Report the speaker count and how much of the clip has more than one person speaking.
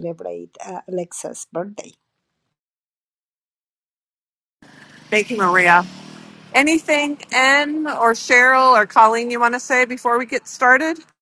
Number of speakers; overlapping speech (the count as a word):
two, no overlap